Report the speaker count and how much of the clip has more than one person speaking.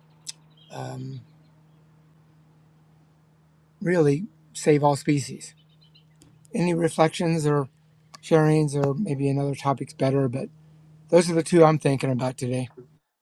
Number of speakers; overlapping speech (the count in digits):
1, no overlap